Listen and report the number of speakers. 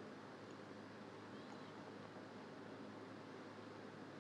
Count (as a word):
zero